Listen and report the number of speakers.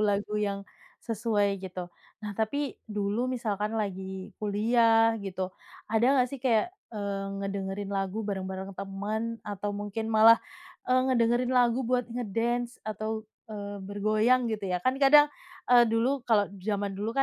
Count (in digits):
1